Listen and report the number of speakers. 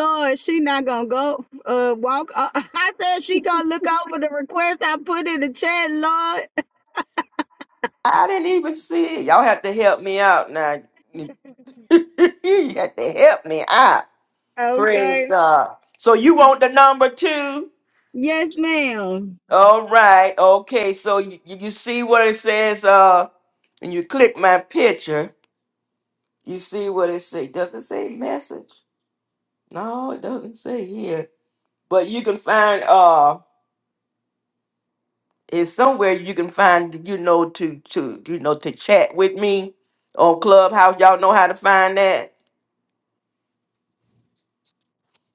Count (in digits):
2